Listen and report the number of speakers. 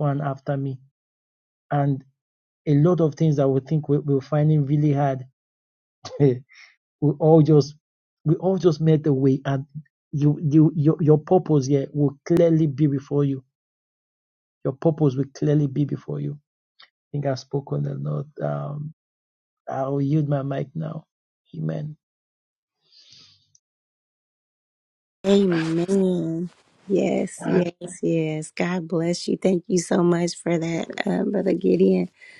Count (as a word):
two